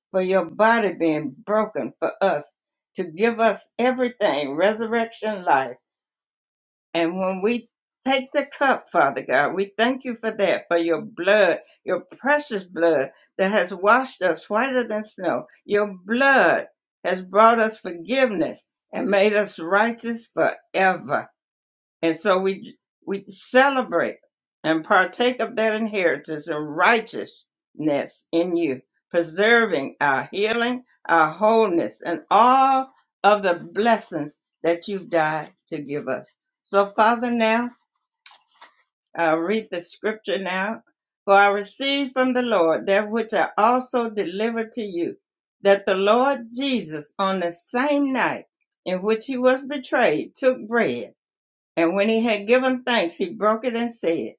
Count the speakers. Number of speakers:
1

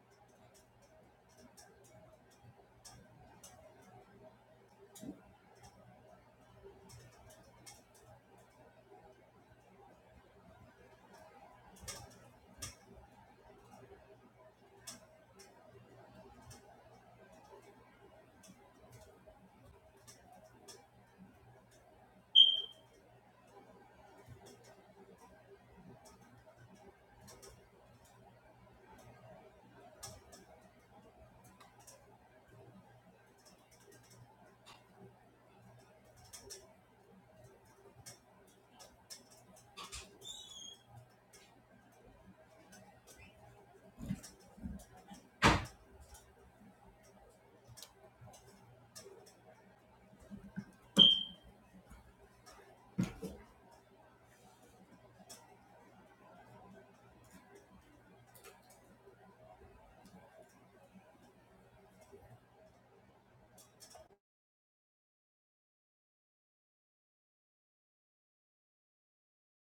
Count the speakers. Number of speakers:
0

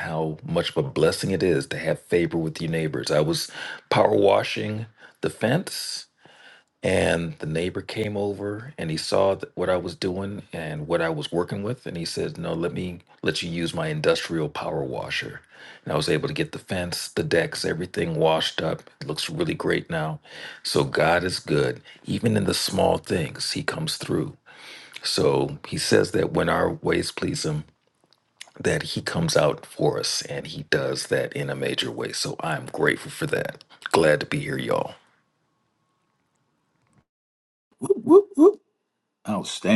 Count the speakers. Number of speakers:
2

